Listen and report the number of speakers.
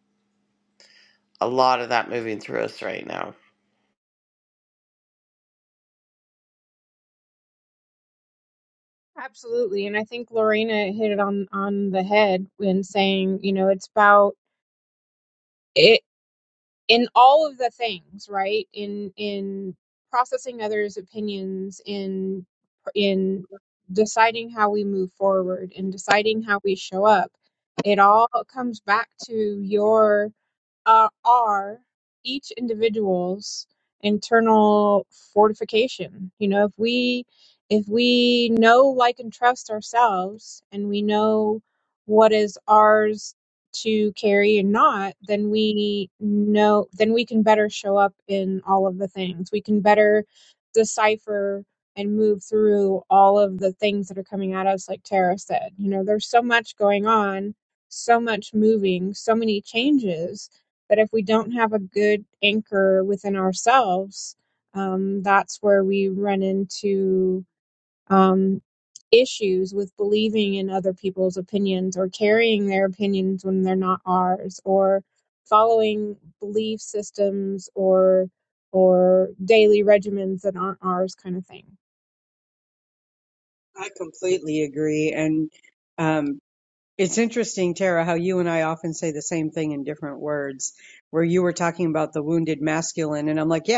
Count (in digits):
3